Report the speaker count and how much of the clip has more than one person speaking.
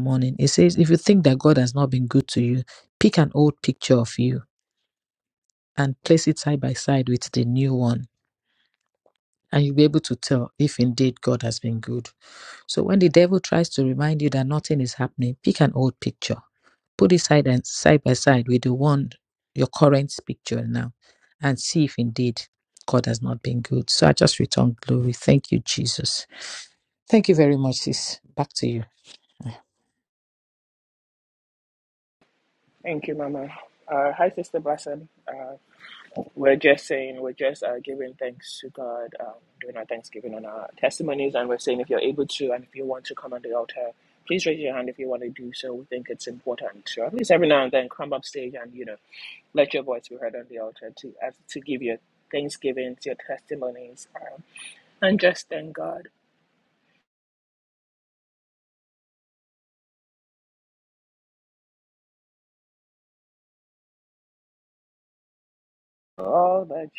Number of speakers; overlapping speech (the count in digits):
2, no overlap